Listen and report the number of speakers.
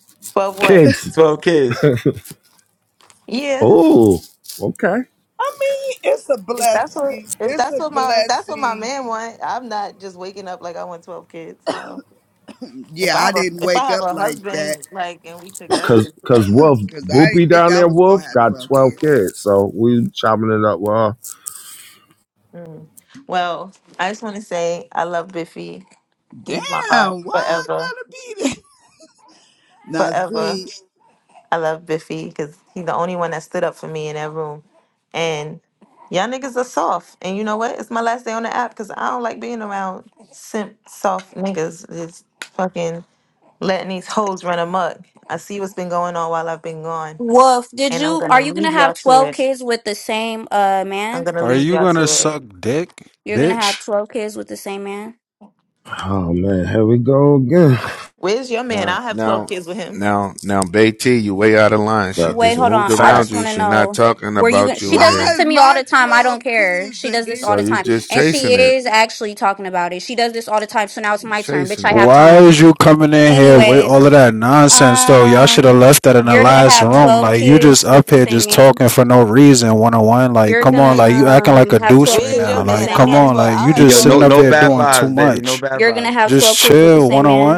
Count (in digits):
7